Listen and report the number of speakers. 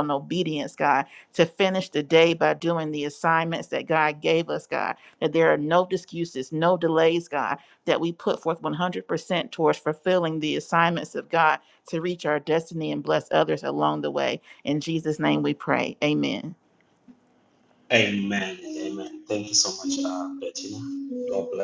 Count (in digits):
2